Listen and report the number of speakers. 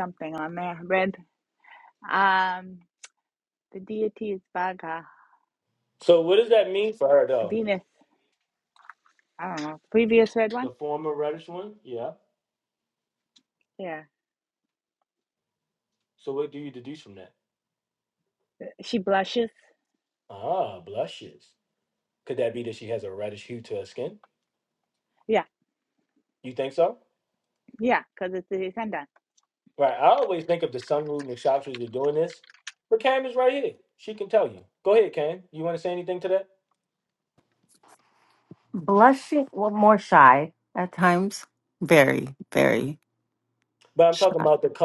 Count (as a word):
three